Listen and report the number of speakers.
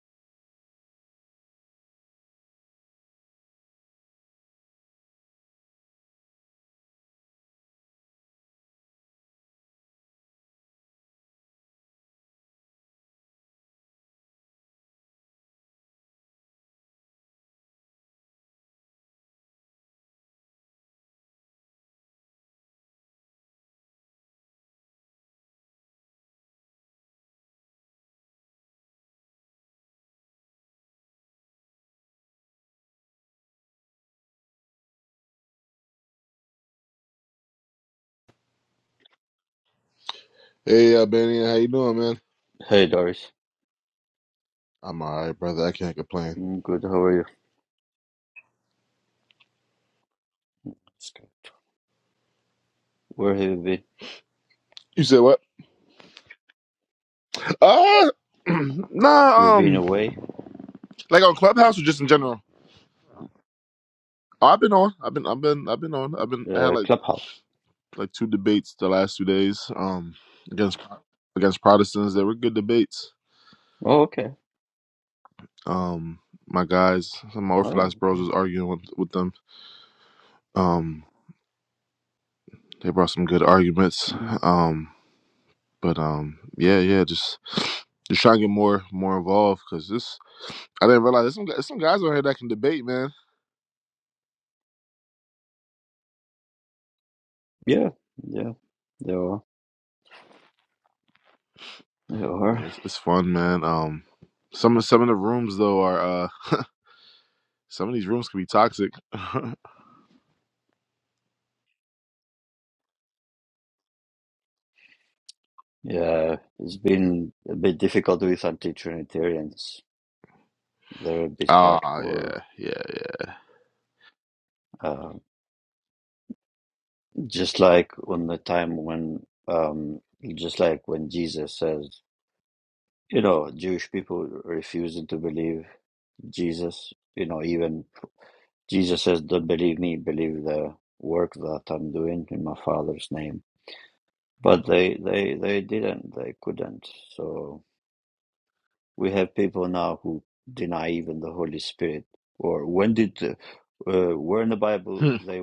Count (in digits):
2